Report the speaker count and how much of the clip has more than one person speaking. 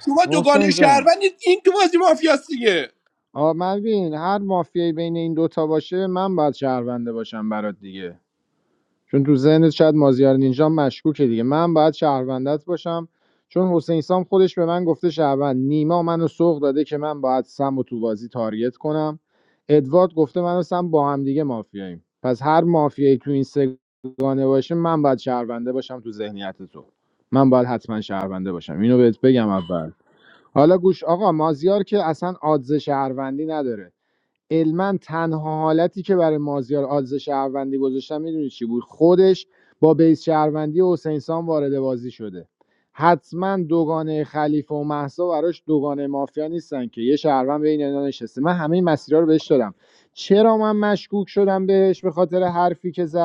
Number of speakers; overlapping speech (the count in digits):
2, about 1%